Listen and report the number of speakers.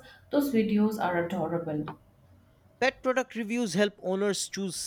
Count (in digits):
2